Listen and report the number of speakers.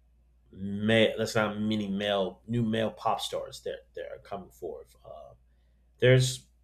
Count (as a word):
one